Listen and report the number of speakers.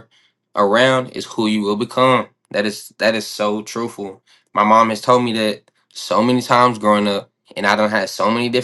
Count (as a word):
one